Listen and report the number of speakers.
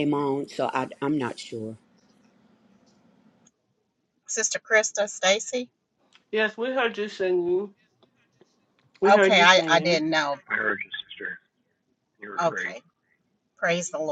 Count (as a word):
four